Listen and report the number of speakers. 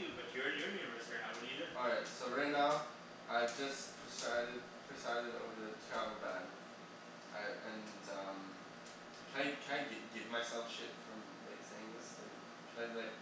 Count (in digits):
2